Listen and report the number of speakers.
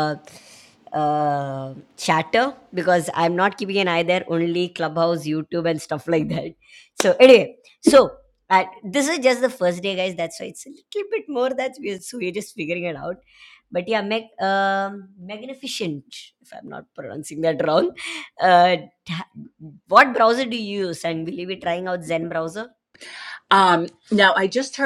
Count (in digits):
2